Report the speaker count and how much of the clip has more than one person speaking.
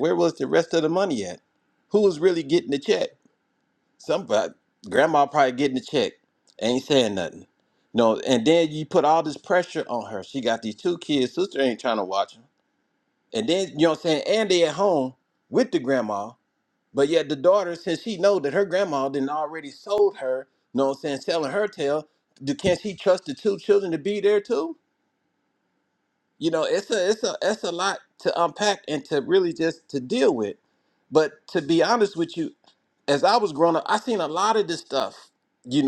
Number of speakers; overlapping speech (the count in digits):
1, no overlap